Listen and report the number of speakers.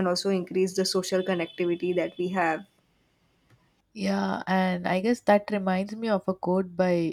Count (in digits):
2